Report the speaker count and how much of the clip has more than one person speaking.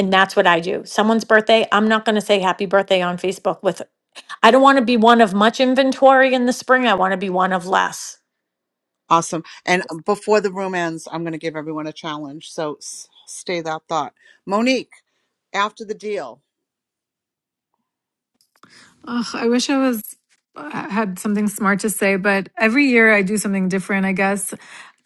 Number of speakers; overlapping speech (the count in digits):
3, no overlap